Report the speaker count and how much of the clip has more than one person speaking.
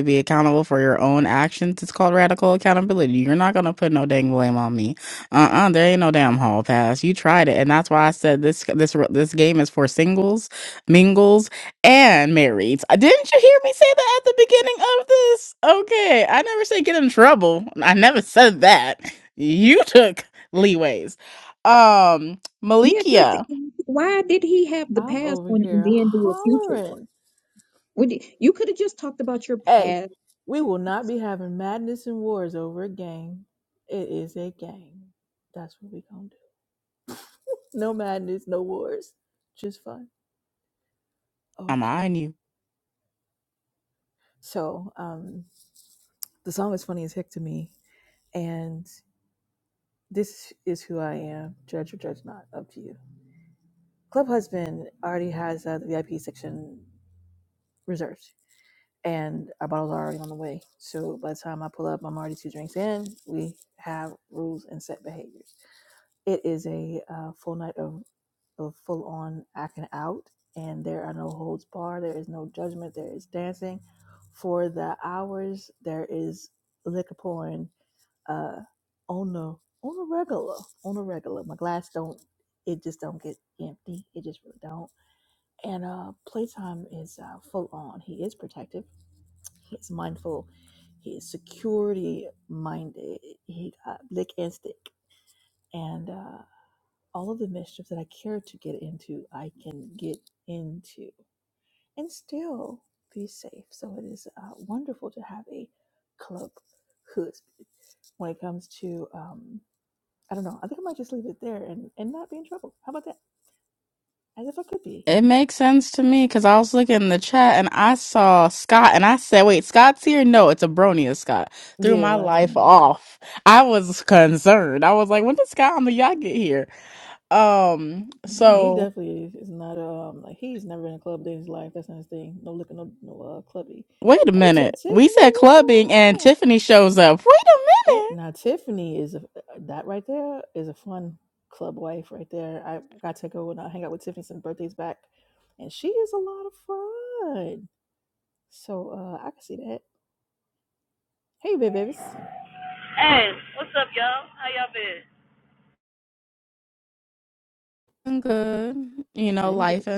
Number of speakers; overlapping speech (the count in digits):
4, about 5%